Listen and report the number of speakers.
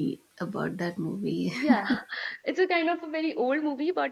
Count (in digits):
2